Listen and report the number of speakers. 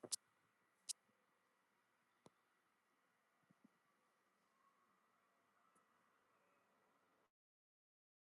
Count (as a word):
zero